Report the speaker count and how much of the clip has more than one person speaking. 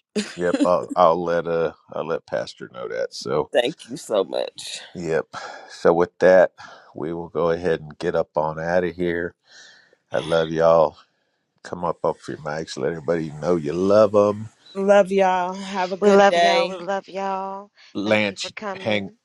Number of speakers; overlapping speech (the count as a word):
three, about 9%